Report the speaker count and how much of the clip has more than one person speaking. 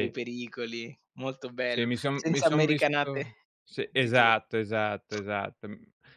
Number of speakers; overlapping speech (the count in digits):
2, about 26%